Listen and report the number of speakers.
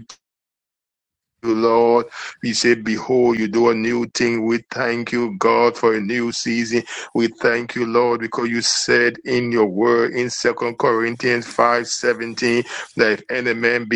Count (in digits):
1